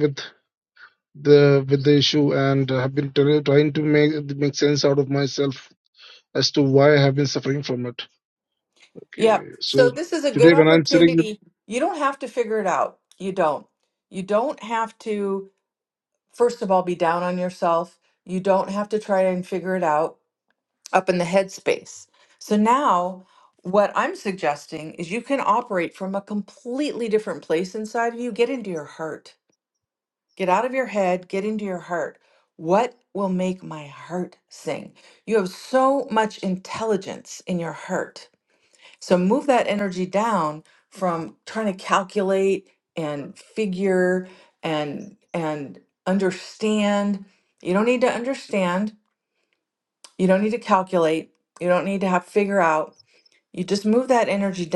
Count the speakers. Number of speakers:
2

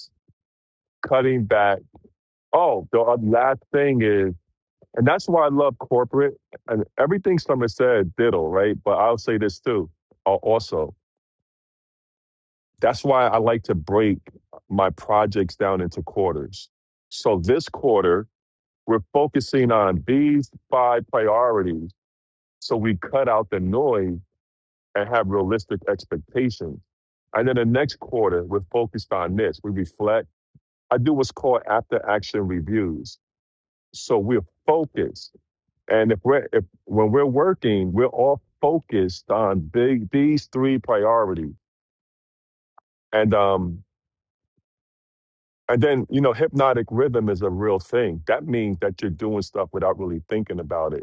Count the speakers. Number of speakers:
1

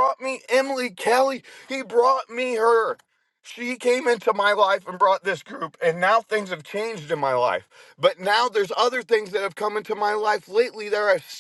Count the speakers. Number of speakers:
1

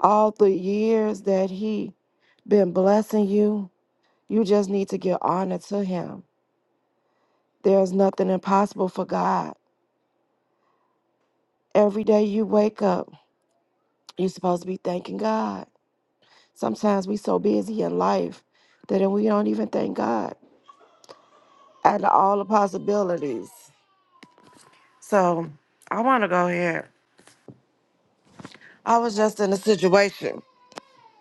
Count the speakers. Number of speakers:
1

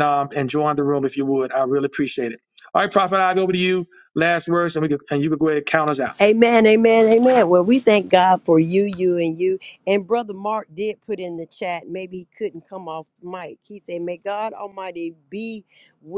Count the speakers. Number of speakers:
2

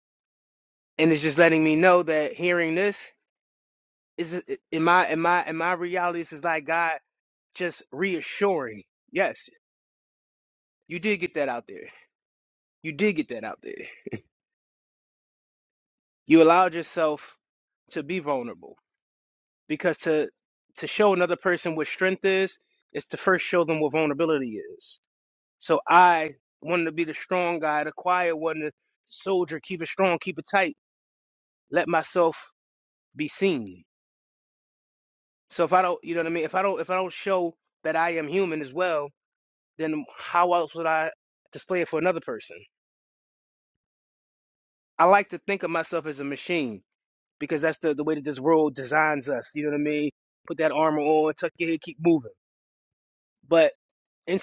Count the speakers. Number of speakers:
1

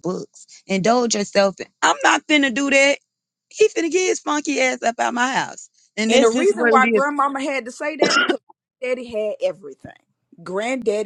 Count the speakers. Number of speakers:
2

